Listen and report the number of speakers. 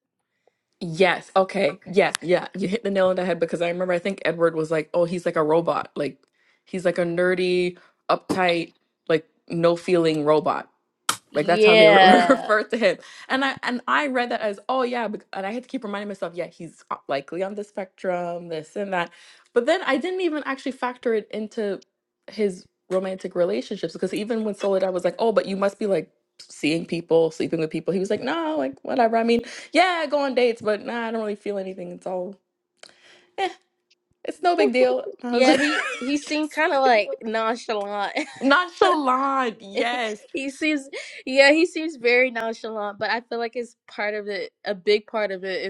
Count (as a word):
two